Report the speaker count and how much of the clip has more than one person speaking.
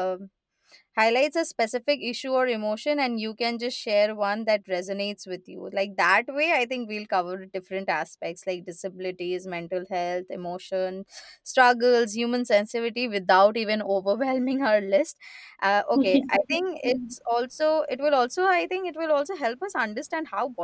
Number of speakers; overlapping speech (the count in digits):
1, no overlap